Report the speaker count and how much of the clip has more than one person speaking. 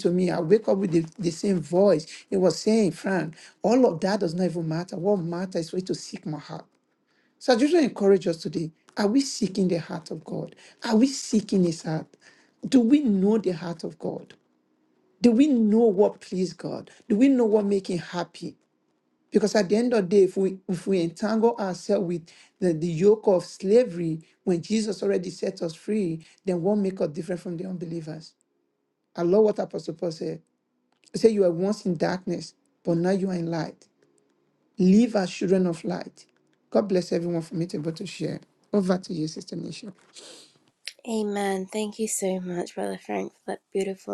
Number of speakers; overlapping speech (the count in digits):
2, no overlap